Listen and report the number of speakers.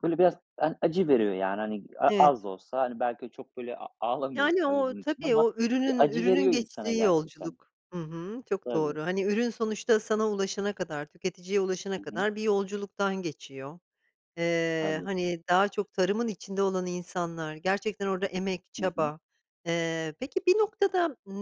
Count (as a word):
two